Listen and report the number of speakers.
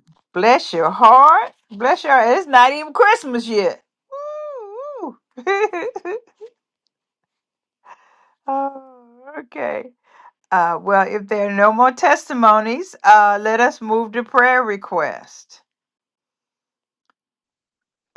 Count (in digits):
1